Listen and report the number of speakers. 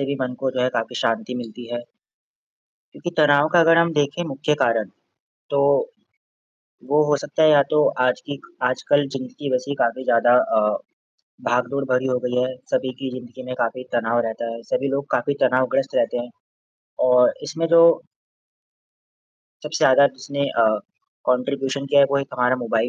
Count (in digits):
1